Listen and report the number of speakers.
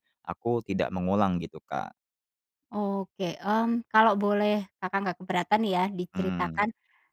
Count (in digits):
2